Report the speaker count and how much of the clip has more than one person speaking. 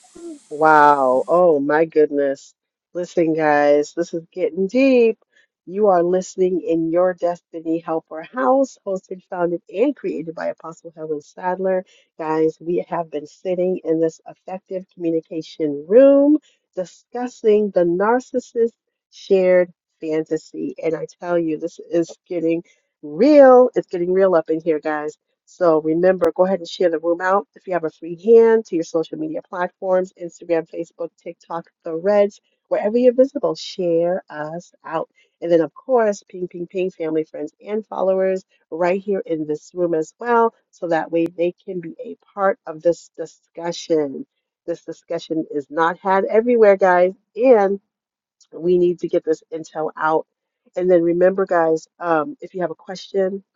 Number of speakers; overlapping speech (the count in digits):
1, no overlap